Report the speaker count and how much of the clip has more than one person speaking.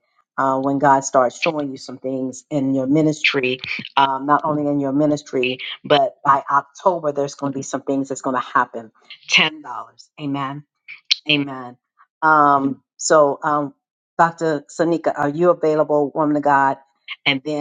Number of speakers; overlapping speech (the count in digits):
1, no overlap